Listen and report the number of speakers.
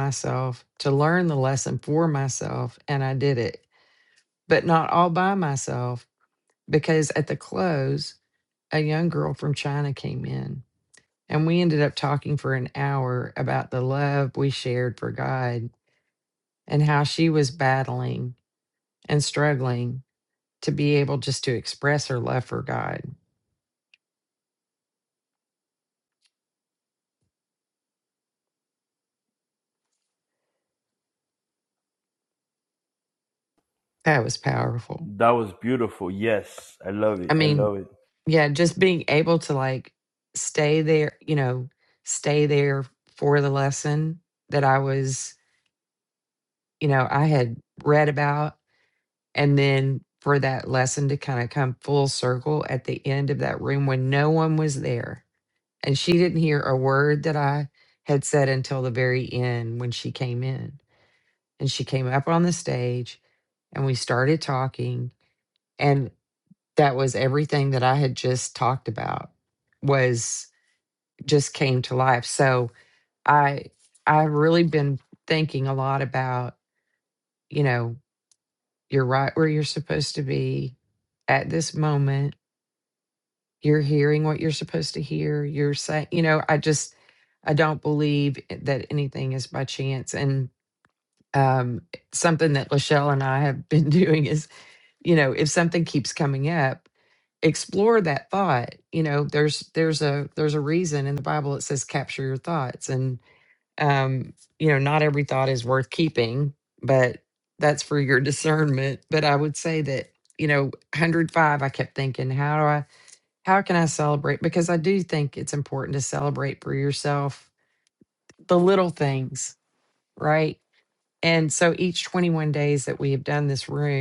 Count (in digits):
2